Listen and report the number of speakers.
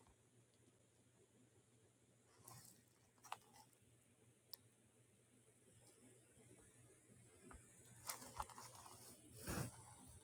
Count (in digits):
0